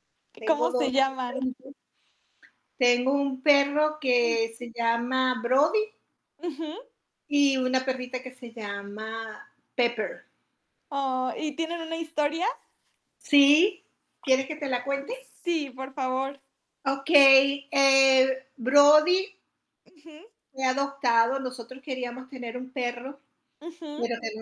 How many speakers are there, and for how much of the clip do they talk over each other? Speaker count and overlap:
two, about 5%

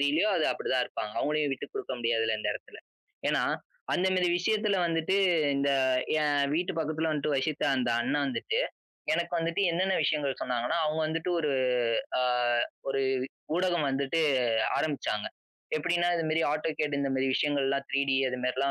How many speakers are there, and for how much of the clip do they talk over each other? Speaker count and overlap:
one, no overlap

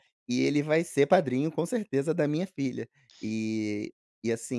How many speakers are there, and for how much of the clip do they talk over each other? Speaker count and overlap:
one, no overlap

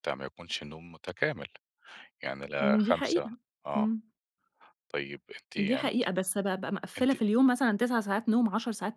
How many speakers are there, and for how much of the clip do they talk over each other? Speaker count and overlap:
two, about 17%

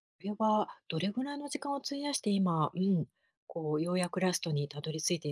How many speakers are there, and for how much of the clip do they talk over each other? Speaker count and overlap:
one, no overlap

